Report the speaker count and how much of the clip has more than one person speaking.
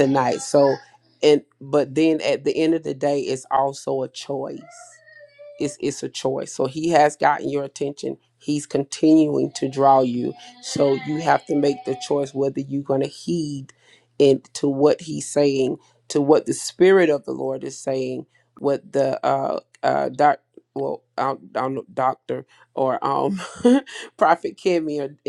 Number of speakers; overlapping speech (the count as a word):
one, no overlap